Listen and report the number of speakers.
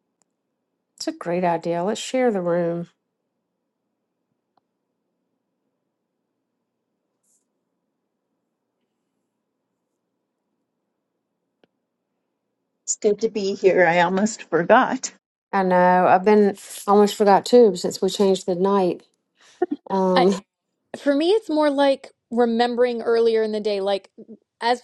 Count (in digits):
3